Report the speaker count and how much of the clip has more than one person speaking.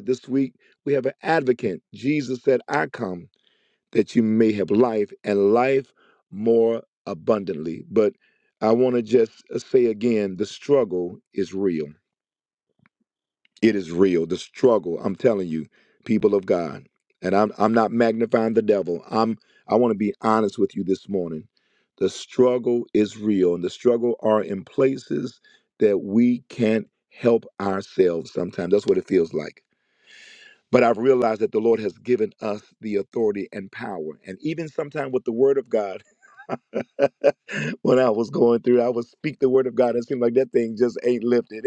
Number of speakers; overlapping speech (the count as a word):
one, no overlap